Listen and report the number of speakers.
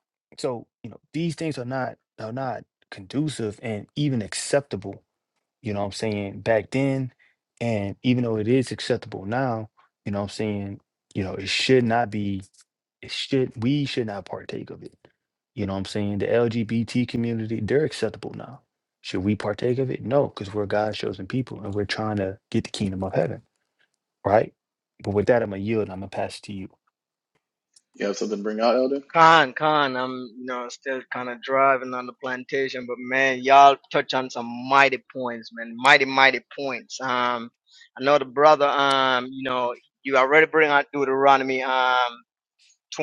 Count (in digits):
3